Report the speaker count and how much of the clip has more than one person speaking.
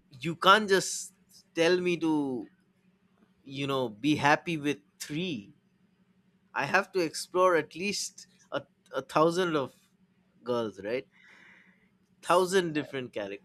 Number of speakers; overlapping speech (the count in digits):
1, no overlap